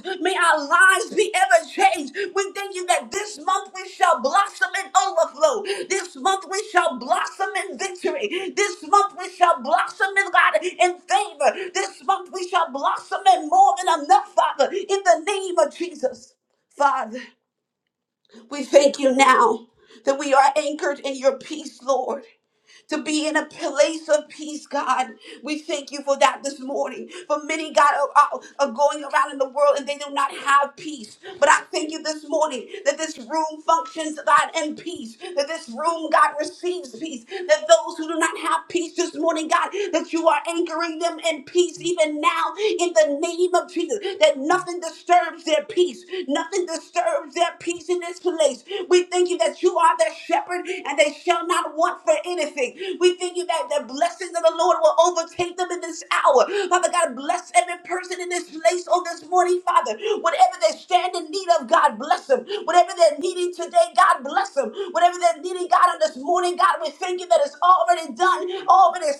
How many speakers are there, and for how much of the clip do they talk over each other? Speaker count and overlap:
1, no overlap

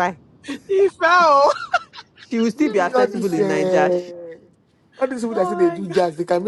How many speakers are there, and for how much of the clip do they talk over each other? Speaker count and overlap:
3, about 35%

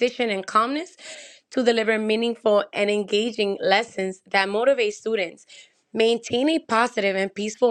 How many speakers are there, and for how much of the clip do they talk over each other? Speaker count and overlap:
1, no overlap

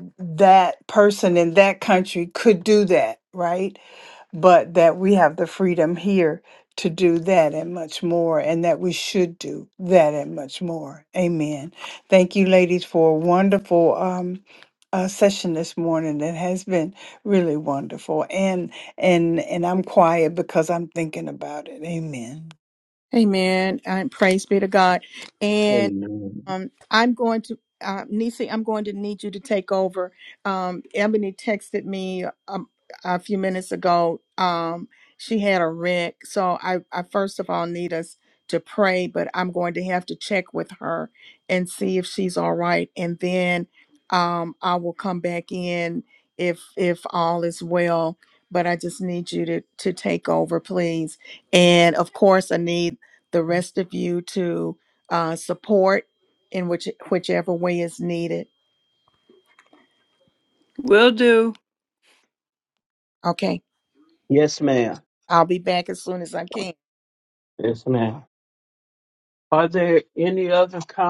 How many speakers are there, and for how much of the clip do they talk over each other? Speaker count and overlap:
3, under 1%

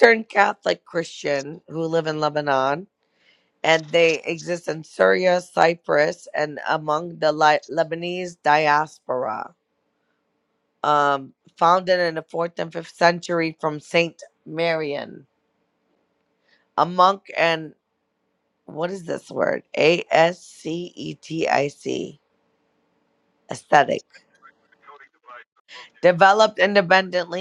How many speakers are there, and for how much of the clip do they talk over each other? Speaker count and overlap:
1, no overlap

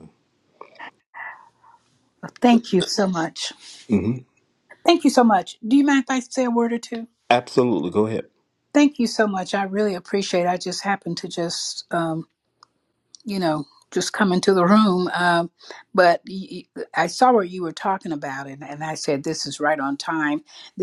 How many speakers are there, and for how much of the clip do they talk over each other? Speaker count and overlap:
2, no overlap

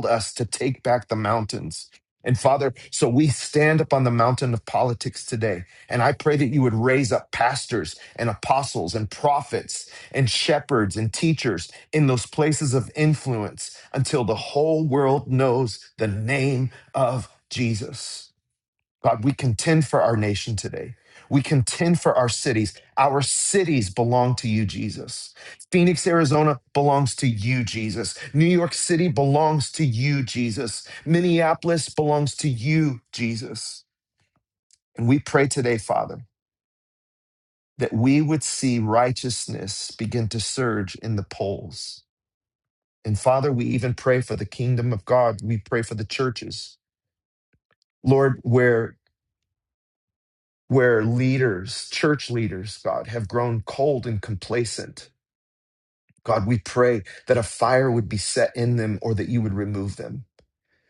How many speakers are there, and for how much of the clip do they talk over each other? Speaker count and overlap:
1, no overlap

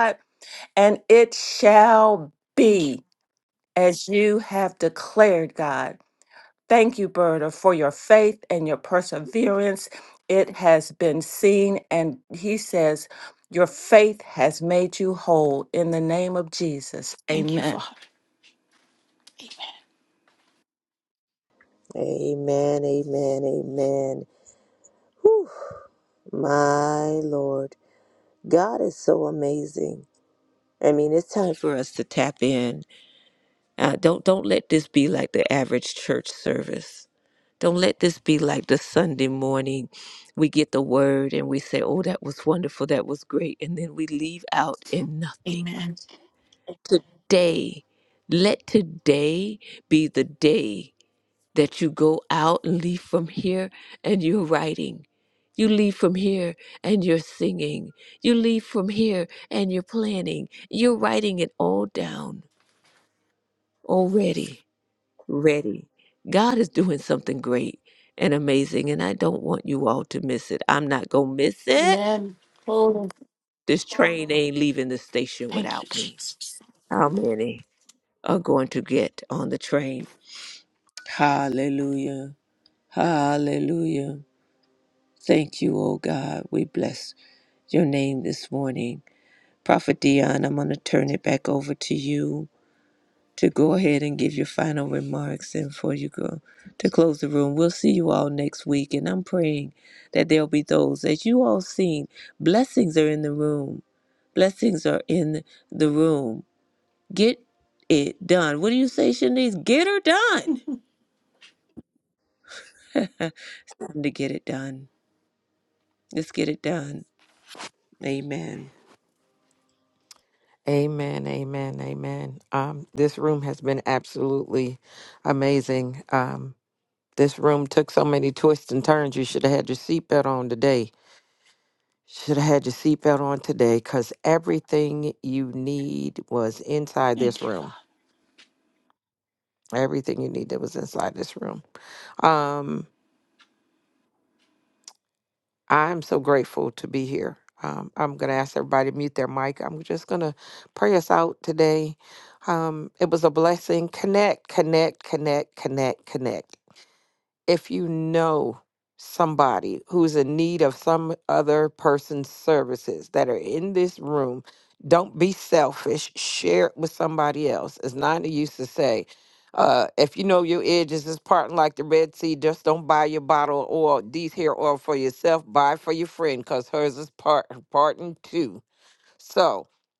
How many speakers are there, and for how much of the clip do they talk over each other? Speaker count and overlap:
4, about 1%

